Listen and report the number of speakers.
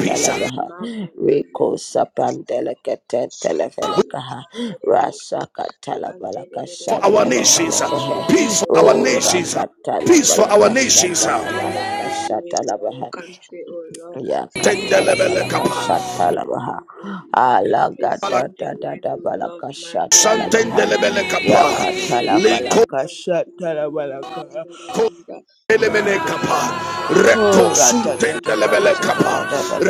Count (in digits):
3